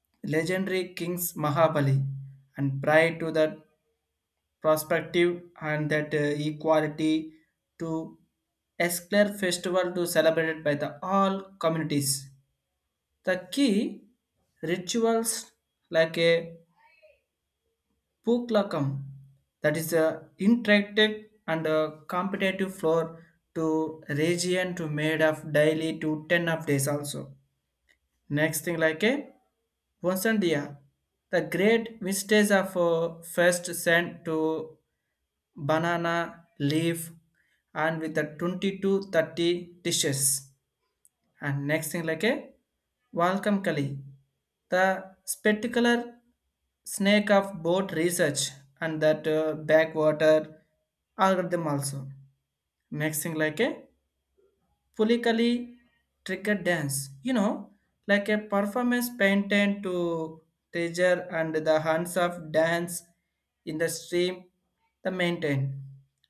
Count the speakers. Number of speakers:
1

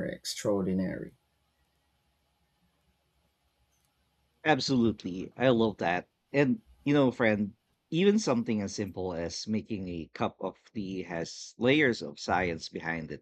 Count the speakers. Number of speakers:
2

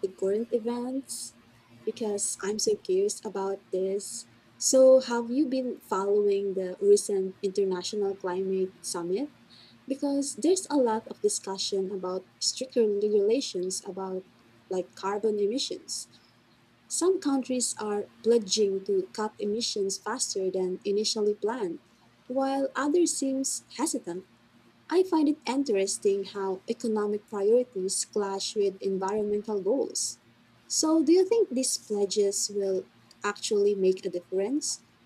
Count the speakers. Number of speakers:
1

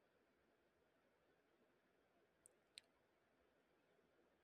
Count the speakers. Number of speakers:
0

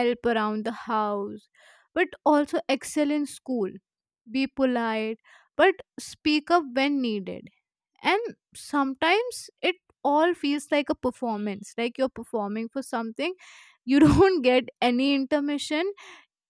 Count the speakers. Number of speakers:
1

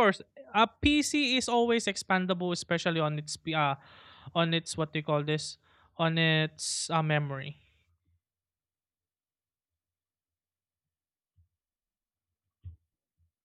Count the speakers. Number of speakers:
1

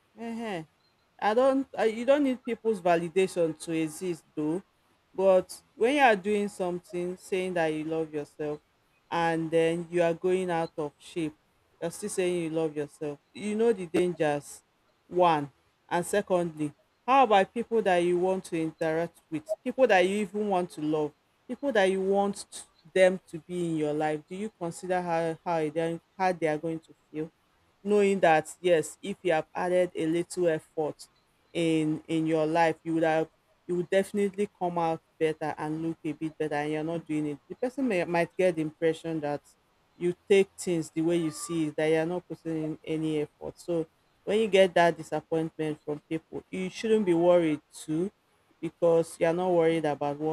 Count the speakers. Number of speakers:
1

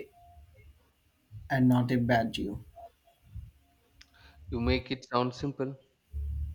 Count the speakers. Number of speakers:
2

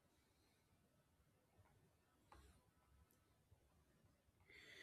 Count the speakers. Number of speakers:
0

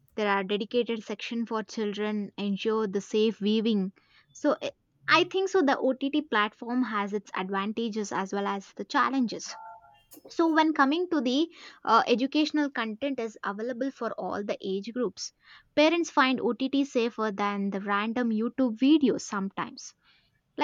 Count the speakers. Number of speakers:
1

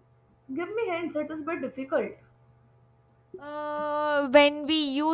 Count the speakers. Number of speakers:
2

